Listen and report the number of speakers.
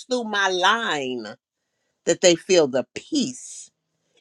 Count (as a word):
one